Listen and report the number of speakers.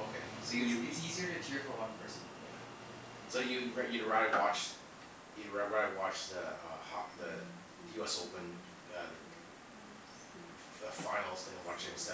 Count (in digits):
2